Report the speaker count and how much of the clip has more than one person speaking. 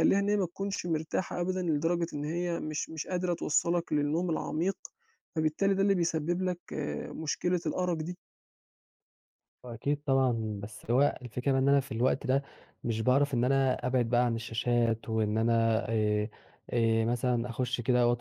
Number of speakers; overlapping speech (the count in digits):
2, no overlap